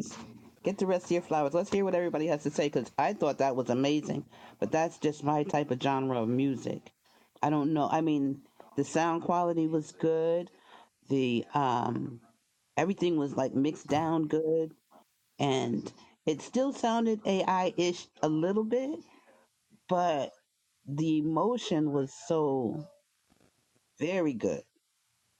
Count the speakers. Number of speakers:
one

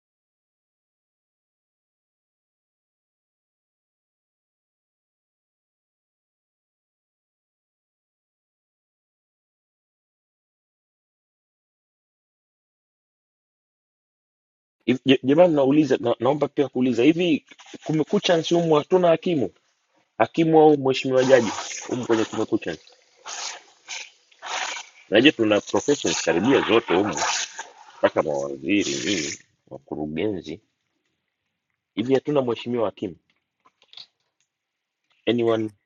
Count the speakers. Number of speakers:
one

